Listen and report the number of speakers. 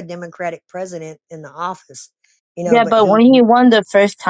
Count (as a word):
two